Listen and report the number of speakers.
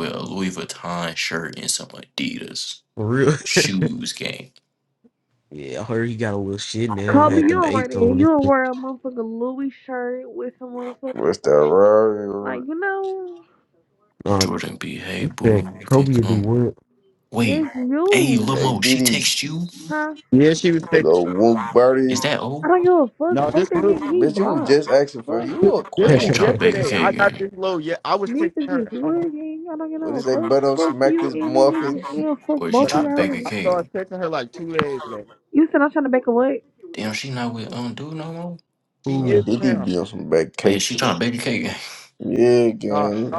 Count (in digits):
5